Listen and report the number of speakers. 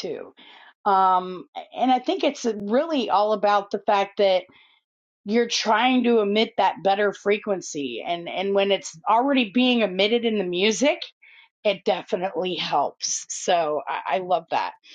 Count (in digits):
1